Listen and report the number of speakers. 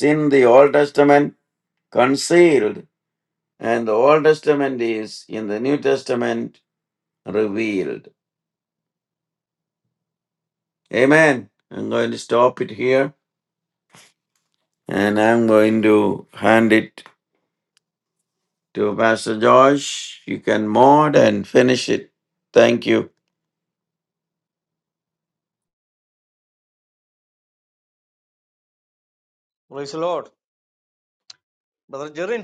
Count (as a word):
two